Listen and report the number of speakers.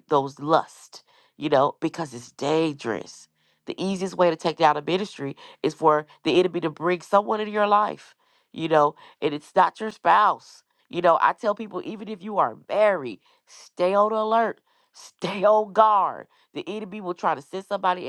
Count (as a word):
one